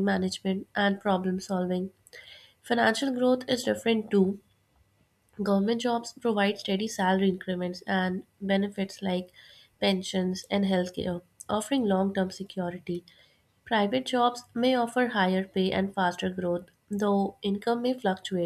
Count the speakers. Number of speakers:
1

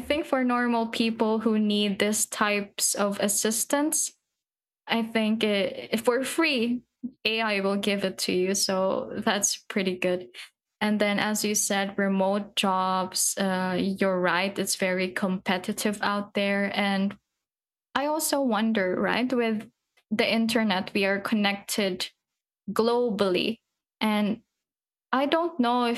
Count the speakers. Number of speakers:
1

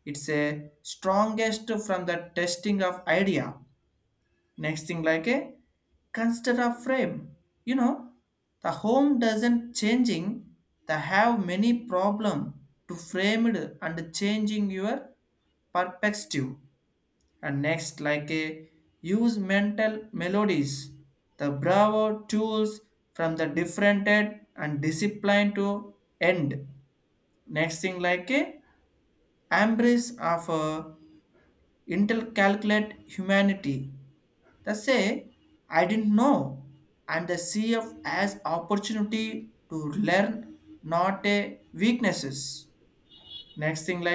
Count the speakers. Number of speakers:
1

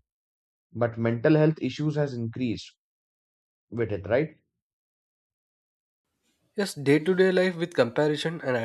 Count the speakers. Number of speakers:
2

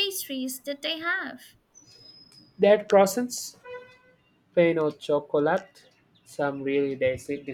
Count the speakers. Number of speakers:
2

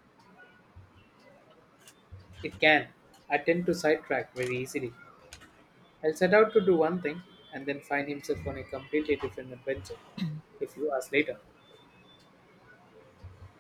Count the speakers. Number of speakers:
1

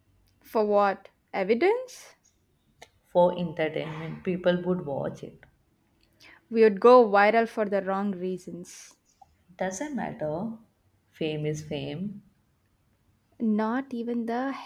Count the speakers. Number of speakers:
2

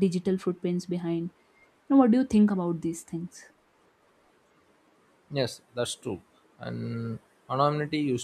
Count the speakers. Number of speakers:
2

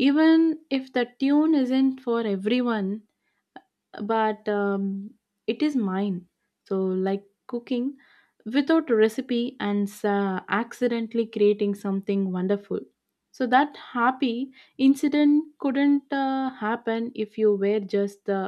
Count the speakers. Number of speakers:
1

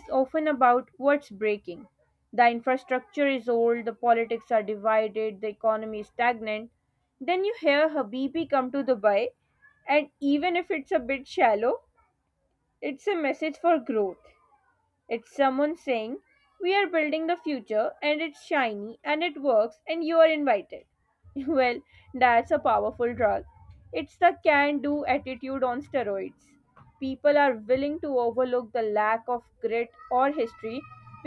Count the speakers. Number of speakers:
1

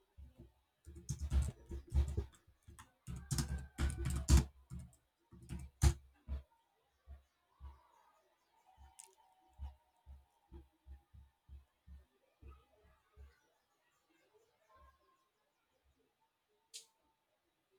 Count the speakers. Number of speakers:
0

